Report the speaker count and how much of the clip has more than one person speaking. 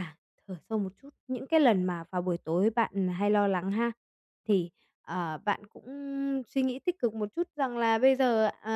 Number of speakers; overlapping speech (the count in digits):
1, no overlap